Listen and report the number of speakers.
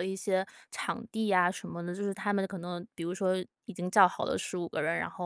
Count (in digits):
1